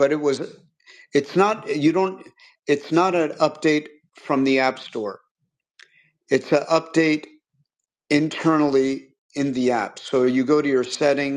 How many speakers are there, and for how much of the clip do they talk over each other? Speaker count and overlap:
1, no overlap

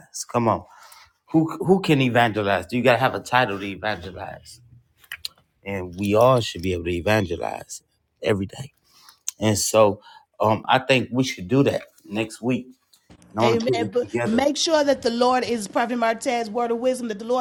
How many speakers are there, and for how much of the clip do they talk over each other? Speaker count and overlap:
2, about 6%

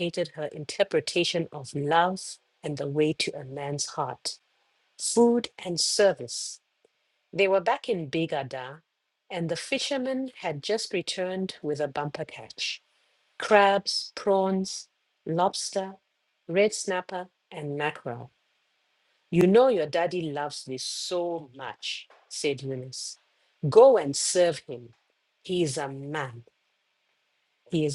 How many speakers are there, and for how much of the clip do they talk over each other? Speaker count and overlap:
1, no overlap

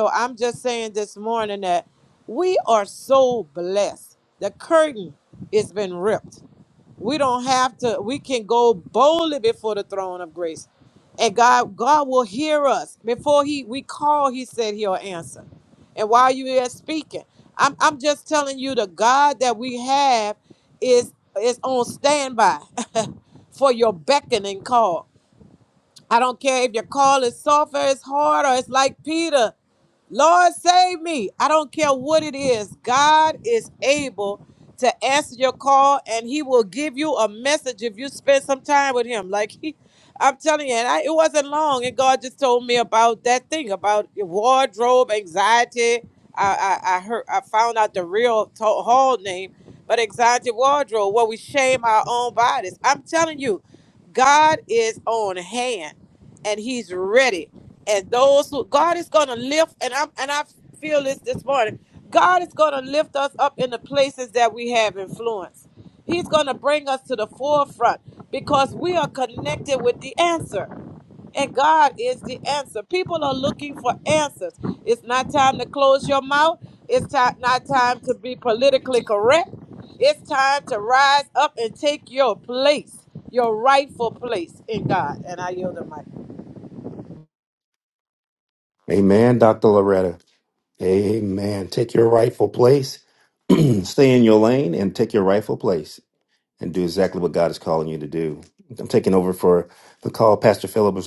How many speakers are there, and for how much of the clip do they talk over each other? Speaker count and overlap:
2, no overlap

